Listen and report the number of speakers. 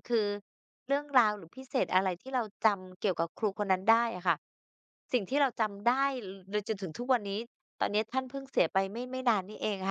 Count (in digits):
1